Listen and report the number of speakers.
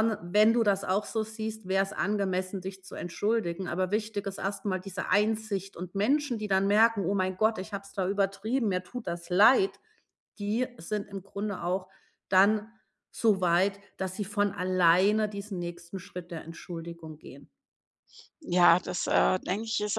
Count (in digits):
2